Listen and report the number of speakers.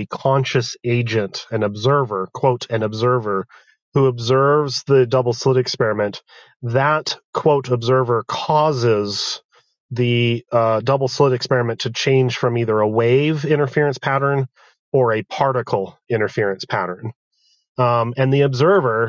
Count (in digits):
1